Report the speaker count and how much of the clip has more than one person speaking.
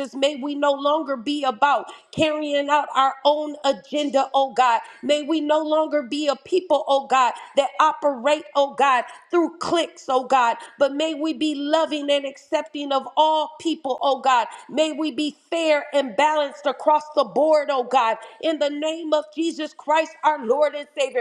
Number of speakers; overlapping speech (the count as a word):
one, no overlap